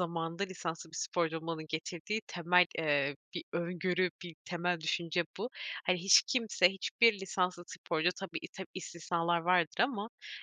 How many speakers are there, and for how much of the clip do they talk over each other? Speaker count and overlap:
1, no overlap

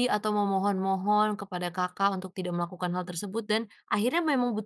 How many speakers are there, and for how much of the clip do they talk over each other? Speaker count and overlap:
1, no overlap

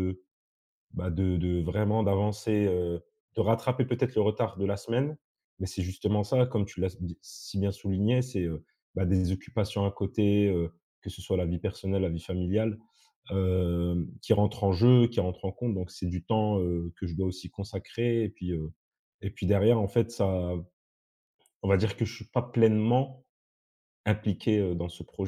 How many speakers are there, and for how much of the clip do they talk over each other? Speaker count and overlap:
1, no overlap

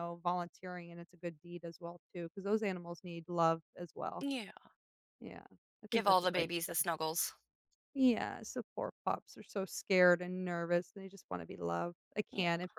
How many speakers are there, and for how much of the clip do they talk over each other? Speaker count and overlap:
2, about 7%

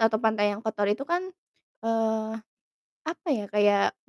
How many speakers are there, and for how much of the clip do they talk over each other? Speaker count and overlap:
1, no overlap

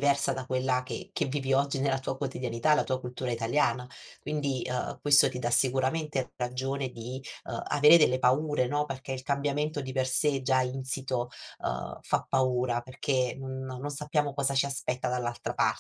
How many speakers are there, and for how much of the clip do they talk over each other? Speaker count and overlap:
1, no overlap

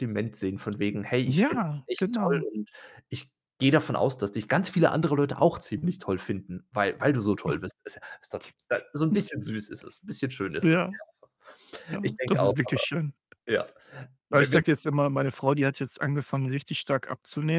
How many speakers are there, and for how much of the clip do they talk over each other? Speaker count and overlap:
2, about 14%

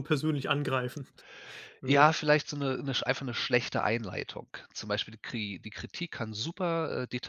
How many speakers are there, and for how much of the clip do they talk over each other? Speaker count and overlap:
2, about 2%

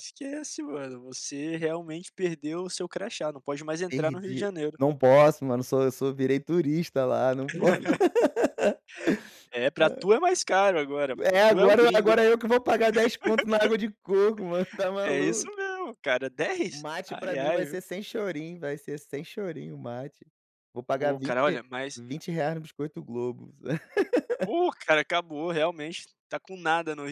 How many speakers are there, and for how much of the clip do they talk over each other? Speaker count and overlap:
2, about 14%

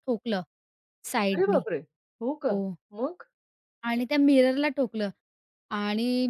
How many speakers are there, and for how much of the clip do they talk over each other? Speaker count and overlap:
2, about 6%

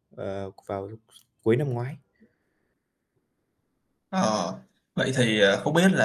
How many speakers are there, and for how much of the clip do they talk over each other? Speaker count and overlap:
2, no overlap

